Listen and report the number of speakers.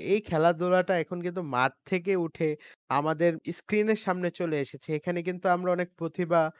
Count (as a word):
one